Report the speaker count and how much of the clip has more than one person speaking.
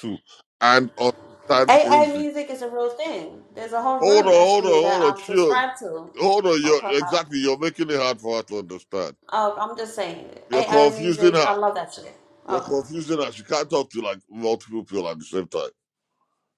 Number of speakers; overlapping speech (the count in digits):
2, about 25%